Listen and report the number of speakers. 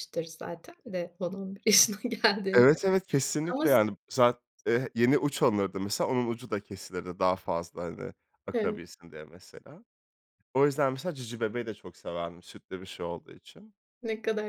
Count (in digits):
2